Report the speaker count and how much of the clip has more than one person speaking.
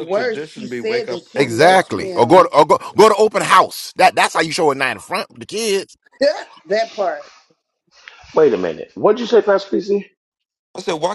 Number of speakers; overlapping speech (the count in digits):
4, about 22%